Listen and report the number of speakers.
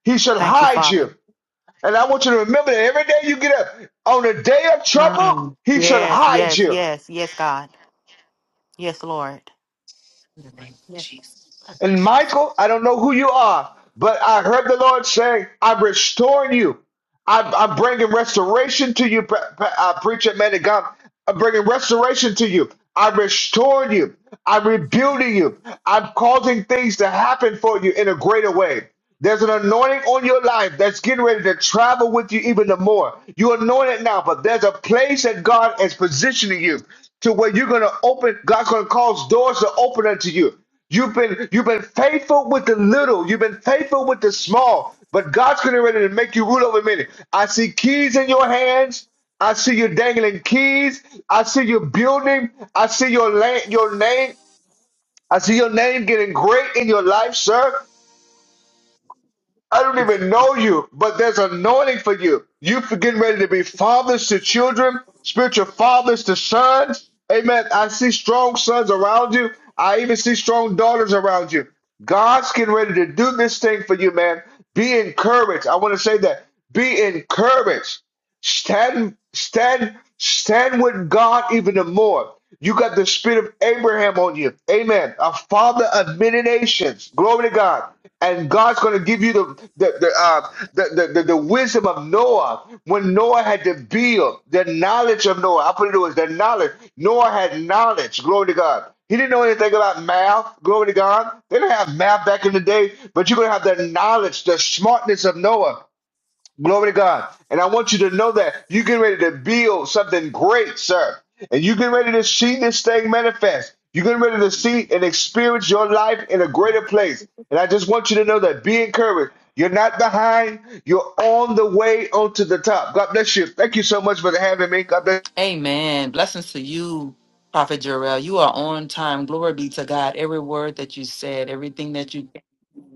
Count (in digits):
3